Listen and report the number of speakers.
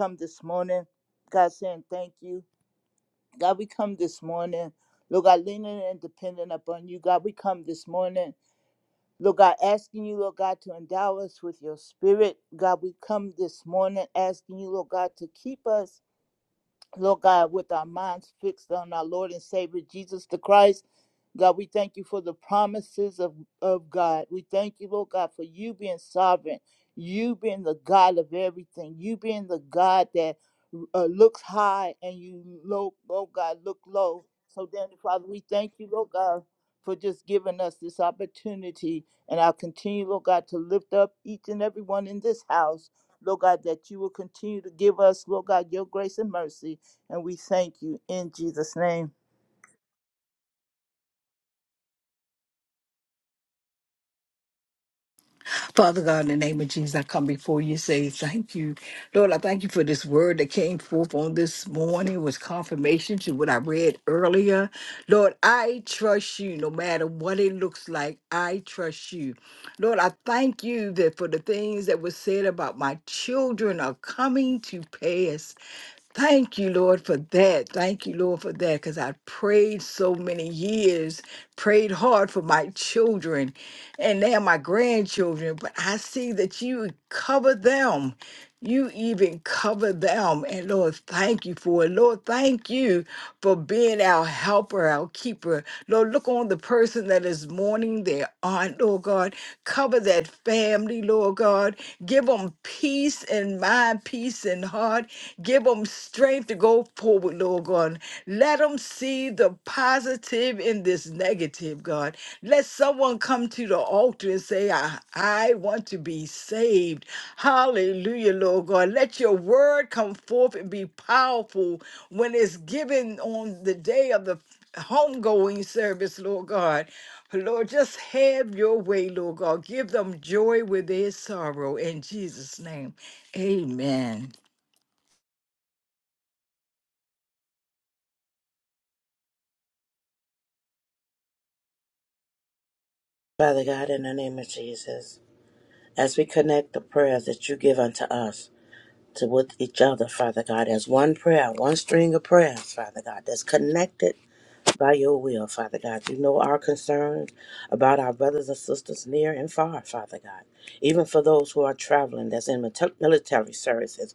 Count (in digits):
3